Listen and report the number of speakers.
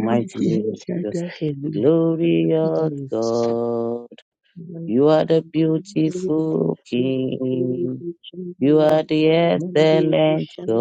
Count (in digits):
2